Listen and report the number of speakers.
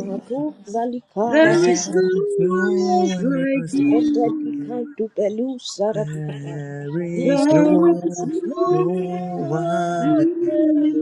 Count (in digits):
3